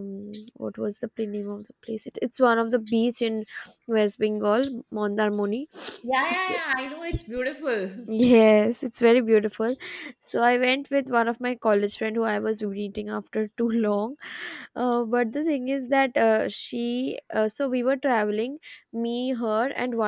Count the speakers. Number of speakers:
2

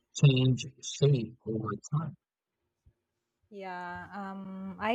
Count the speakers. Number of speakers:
2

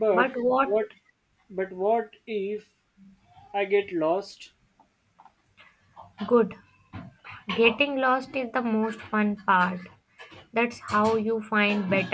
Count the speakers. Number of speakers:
2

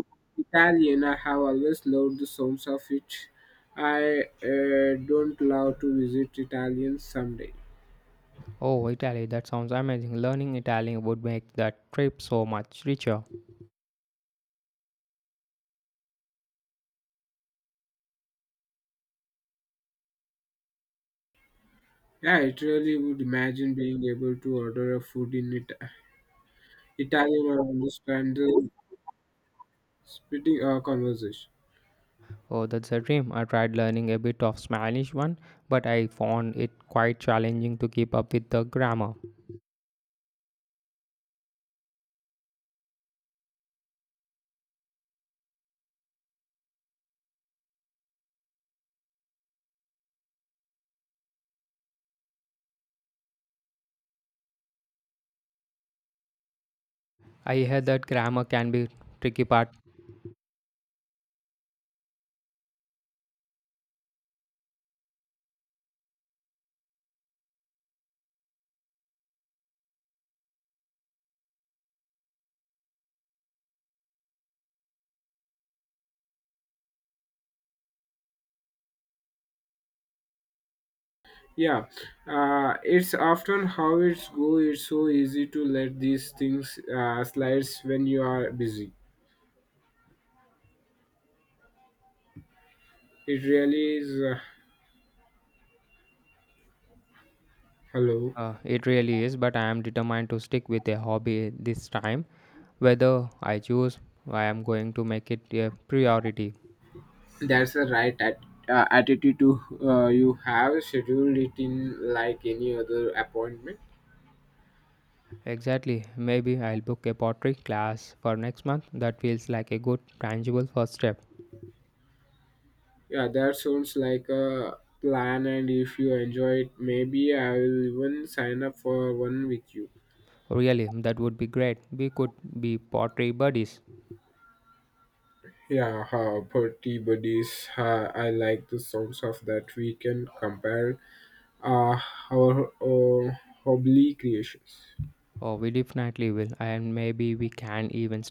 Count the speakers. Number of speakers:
2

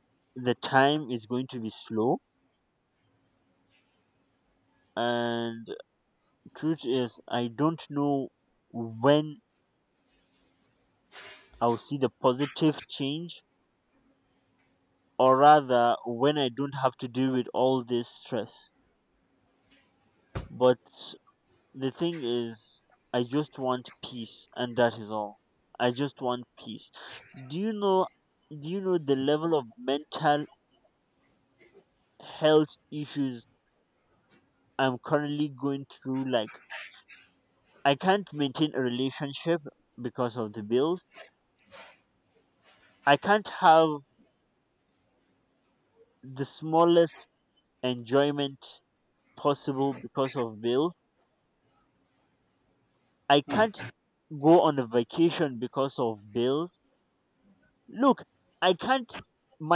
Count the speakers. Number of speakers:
1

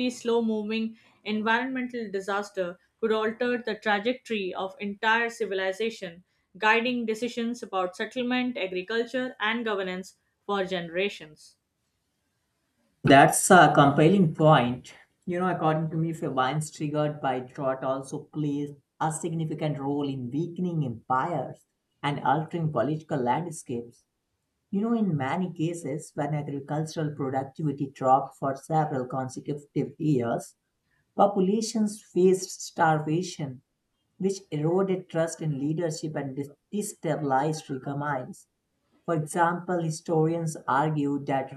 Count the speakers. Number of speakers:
2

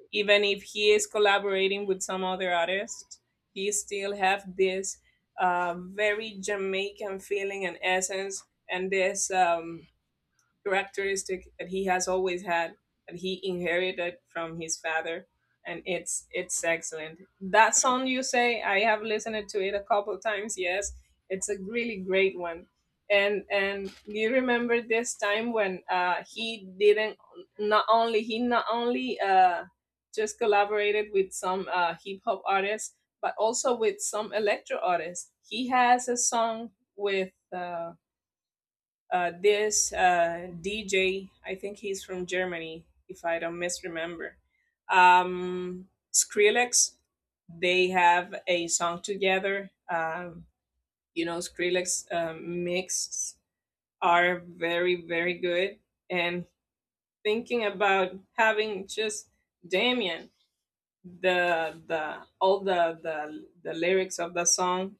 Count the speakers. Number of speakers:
1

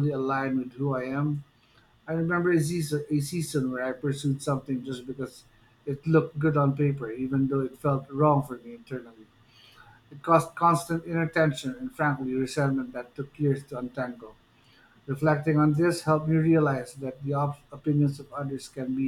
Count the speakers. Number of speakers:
1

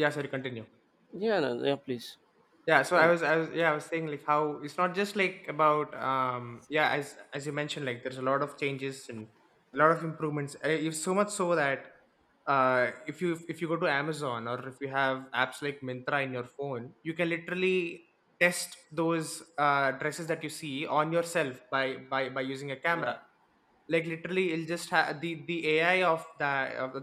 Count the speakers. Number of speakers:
2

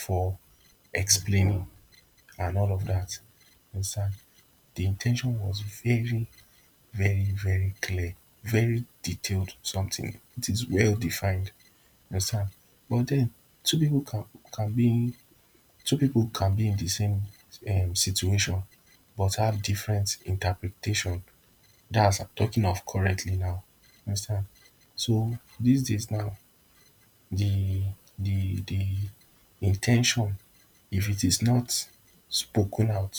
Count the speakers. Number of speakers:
1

